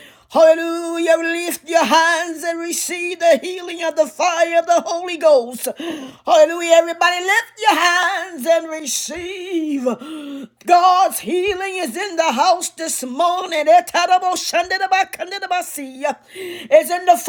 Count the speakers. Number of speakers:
one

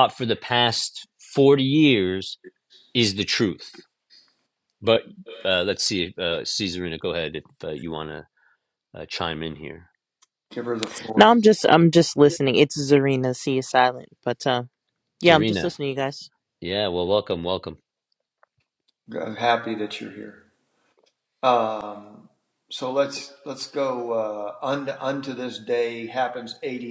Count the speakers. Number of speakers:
three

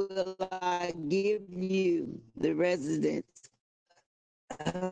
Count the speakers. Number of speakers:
one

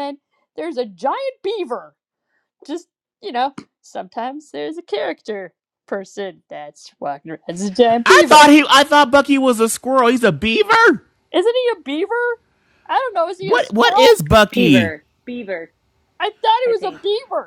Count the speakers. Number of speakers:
three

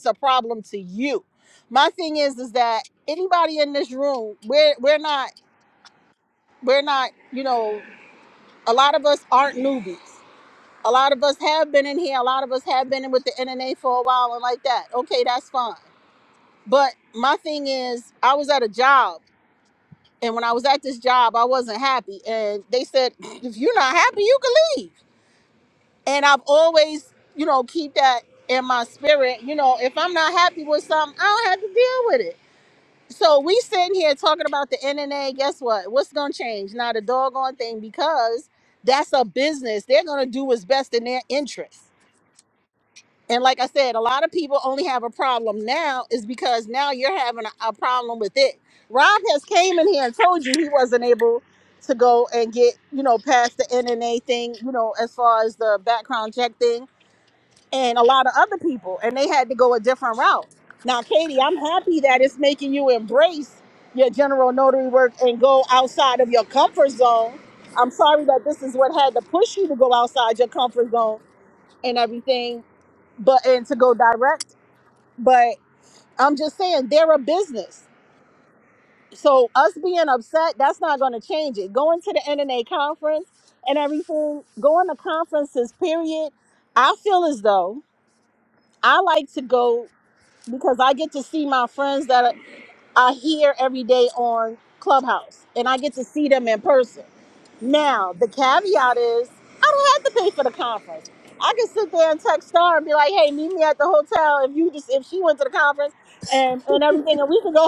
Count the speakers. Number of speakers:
one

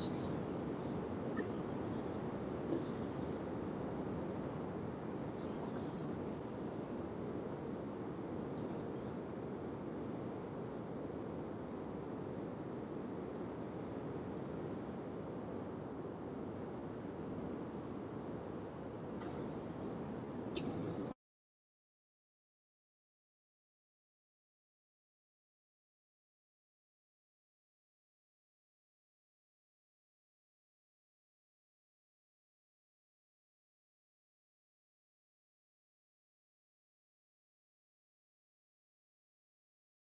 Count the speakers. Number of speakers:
zero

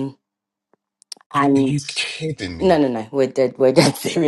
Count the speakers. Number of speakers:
two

